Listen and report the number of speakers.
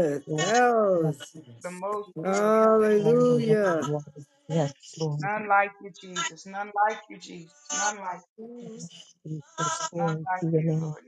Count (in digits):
3